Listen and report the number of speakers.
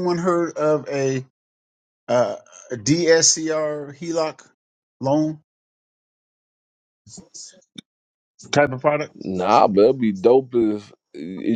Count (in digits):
2